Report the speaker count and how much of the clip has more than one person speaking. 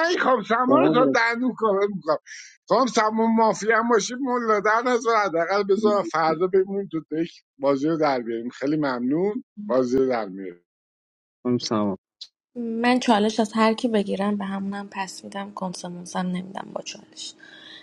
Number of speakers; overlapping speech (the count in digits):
3, about 4%